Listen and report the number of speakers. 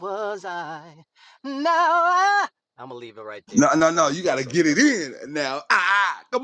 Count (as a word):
two